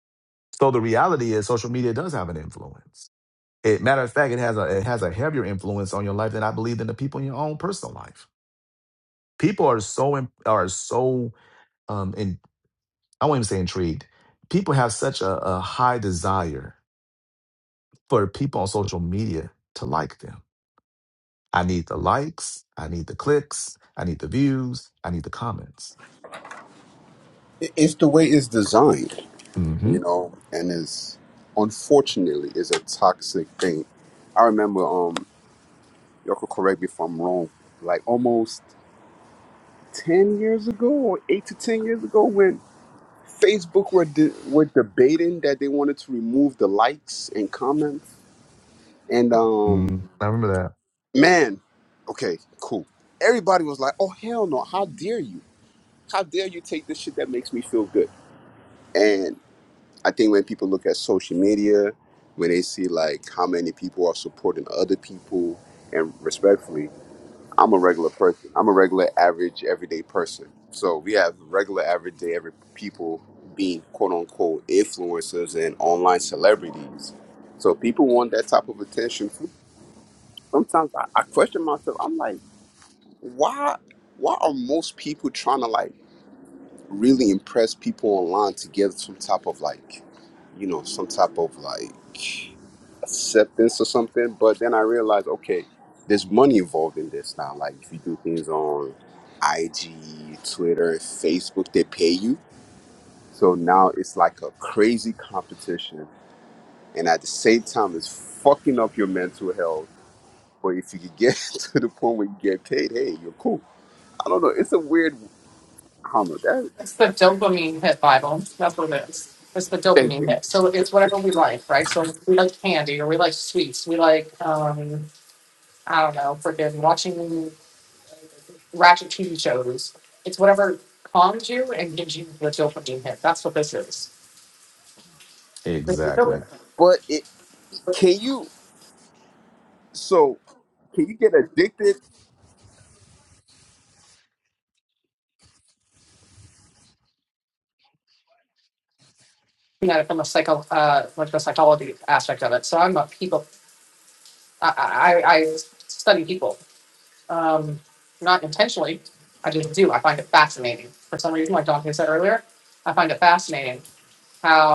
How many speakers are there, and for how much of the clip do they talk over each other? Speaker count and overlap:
three, about 1%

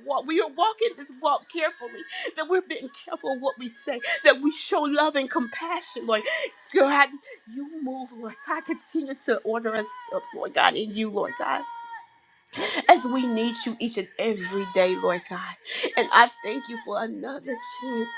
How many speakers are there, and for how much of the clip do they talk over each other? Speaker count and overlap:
one, no overlap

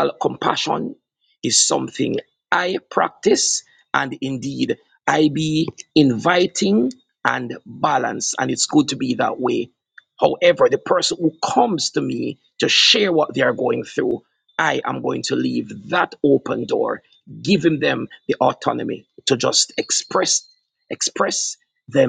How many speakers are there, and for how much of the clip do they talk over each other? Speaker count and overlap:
one, no overlap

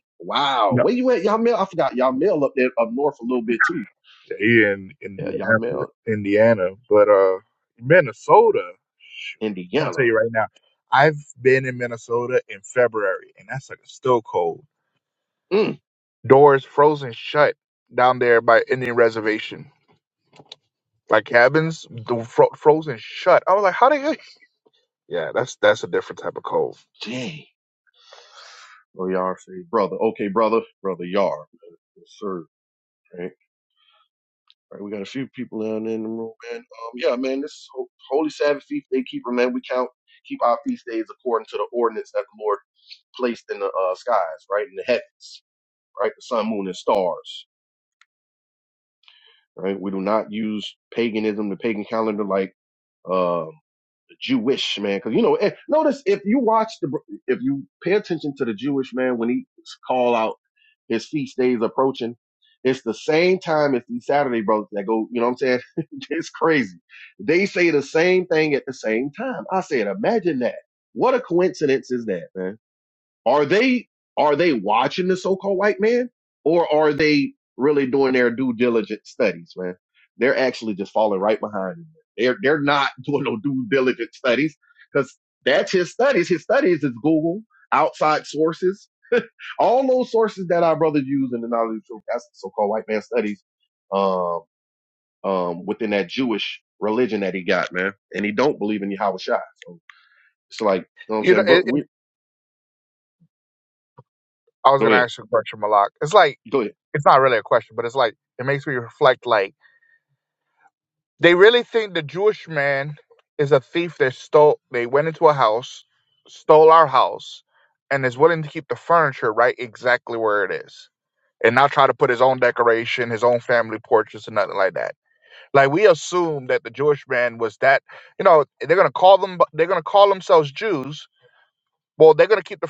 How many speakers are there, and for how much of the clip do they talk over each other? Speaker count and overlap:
two, about 1%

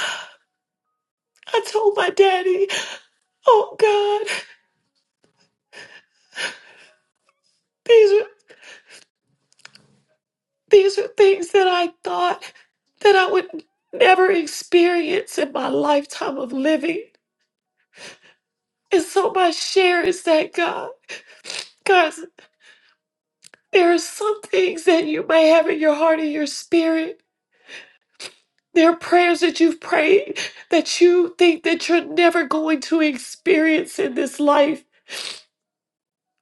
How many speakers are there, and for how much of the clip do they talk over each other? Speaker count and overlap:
one, no overlap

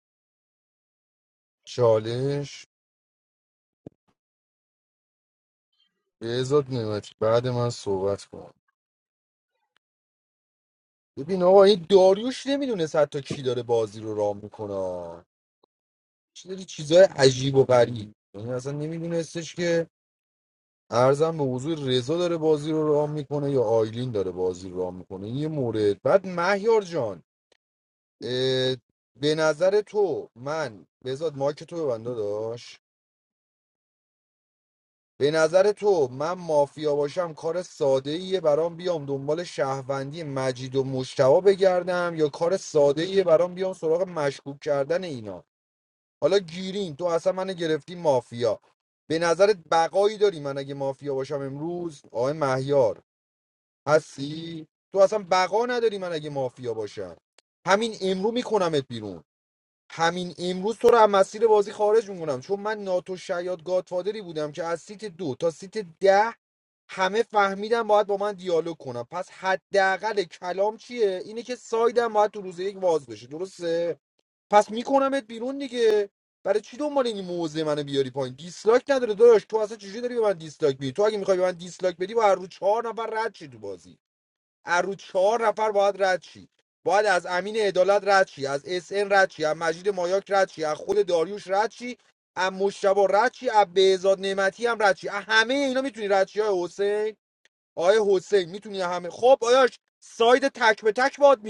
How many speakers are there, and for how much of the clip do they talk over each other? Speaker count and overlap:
one, no overlap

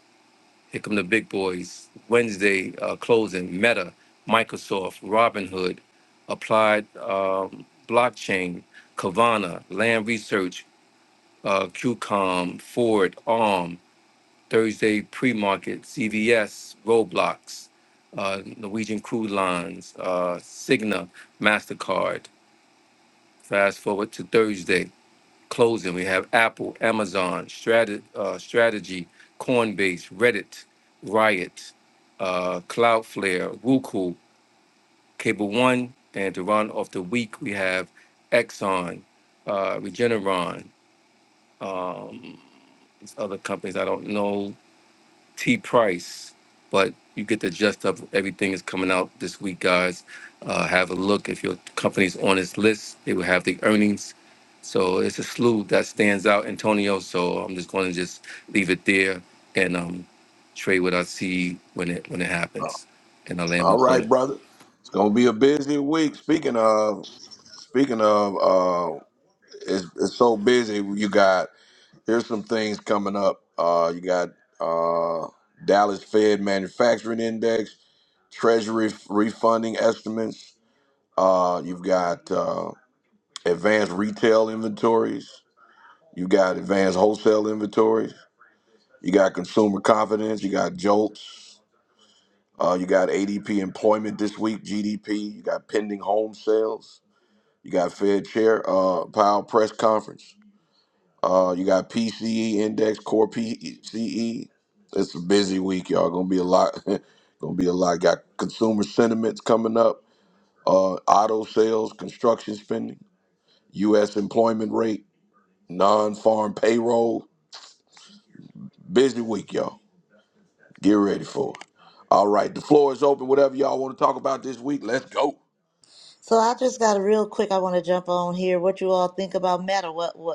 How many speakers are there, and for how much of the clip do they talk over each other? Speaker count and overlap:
three, under 1%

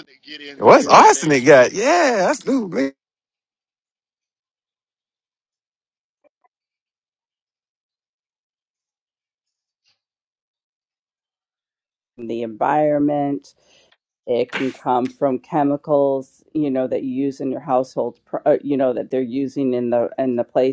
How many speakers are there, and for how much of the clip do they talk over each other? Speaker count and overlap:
three, about 4%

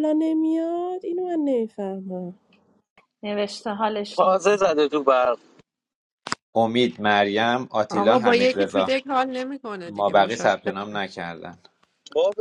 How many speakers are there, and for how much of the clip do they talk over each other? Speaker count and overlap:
five, about 15%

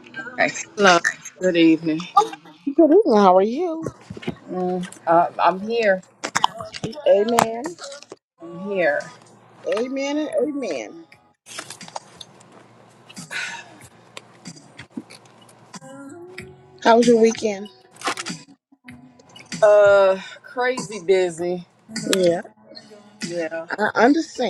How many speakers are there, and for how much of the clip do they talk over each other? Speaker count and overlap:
two, no overlap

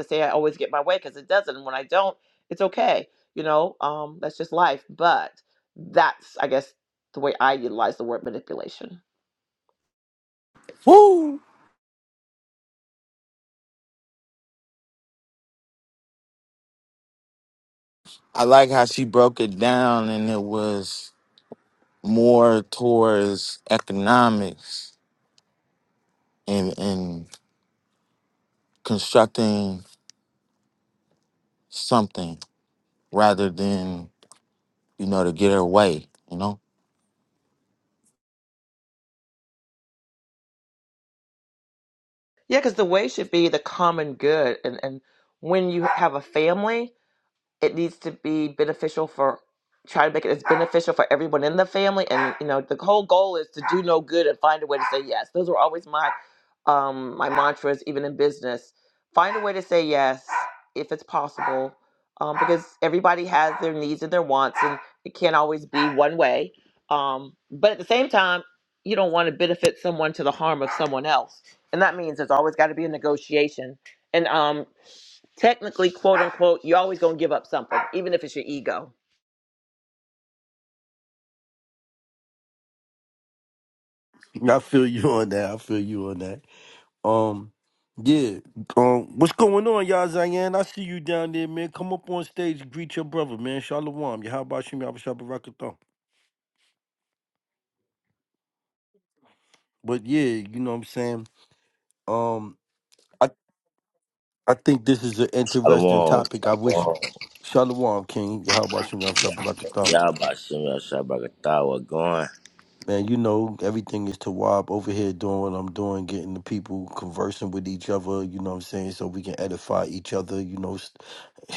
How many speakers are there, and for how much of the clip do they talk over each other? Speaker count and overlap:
four, about 1%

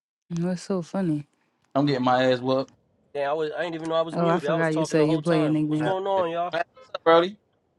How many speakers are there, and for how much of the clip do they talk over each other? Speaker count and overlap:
three, about 31%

